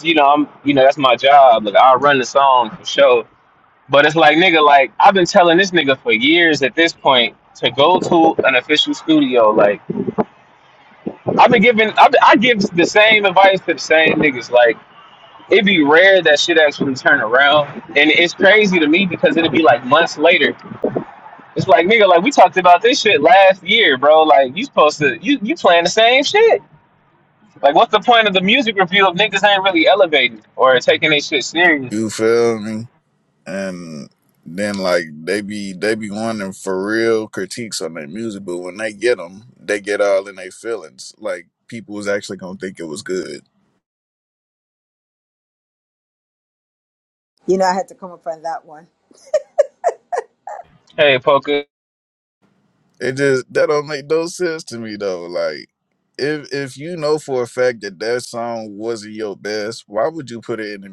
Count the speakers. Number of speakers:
3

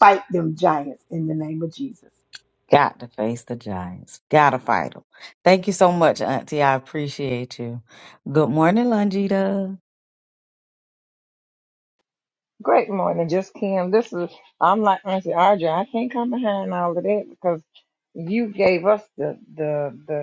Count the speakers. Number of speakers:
3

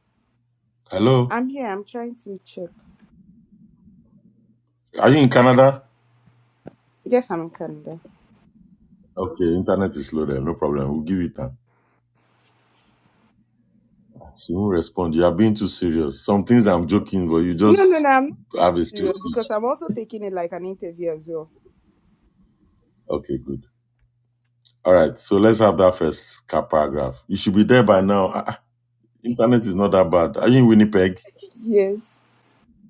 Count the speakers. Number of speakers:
2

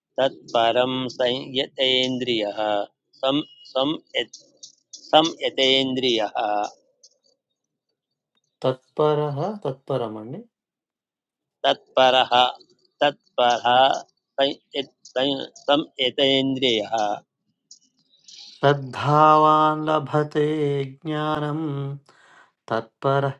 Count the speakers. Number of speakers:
2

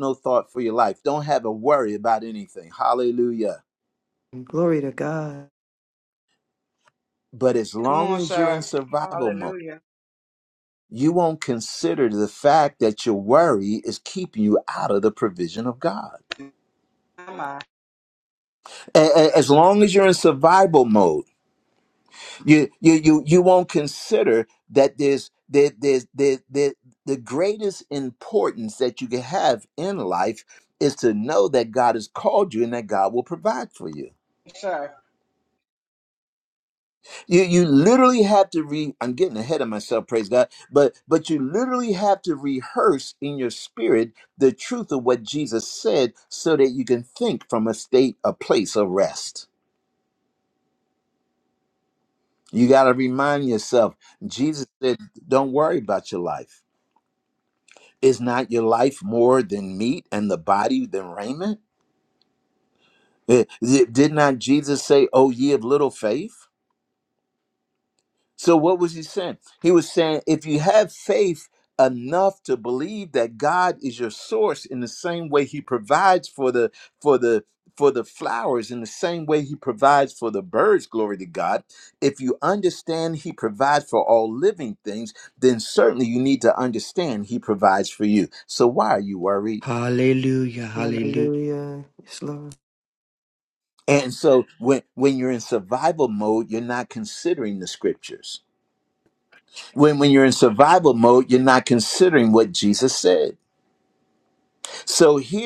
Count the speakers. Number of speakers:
4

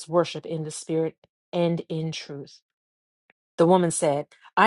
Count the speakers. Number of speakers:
1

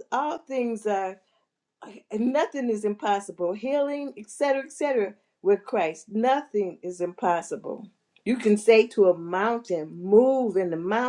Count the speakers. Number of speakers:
1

